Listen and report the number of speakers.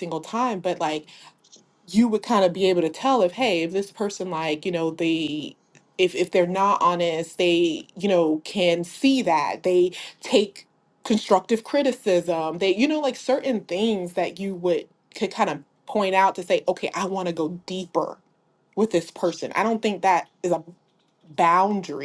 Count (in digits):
1